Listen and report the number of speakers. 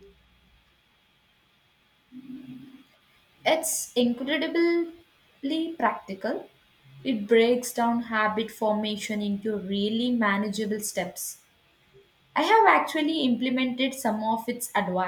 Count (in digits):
1